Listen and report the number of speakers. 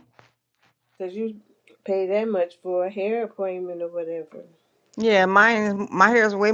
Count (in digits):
2